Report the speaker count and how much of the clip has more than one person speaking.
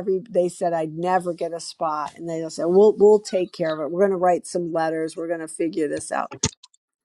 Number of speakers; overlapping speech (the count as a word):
one, no overlap